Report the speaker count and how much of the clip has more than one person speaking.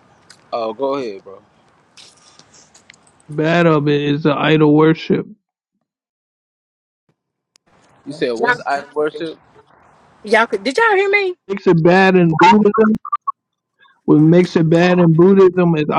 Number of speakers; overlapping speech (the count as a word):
three, no overlap